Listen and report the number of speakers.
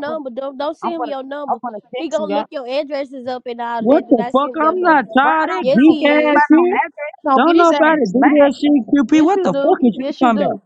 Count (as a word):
three